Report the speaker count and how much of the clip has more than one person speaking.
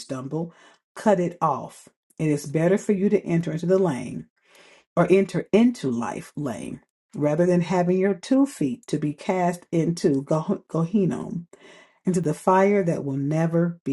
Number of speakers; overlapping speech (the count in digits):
1, no overlap